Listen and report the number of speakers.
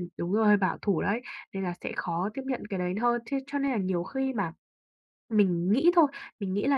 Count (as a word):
one